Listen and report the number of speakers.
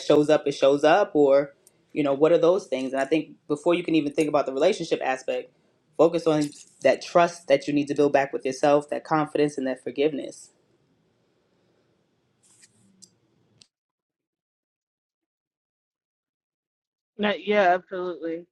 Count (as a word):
two